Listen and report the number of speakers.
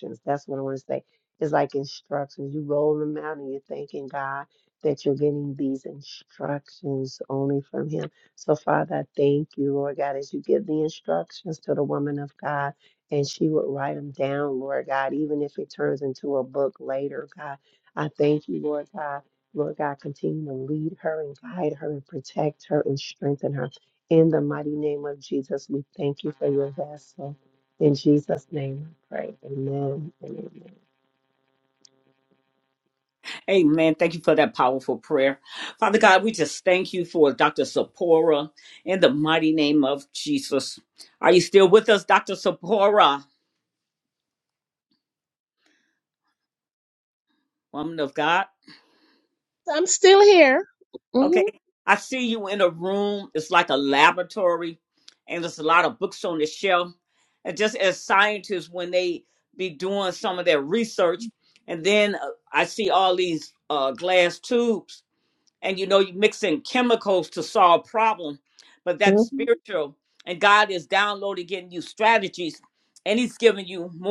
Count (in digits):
3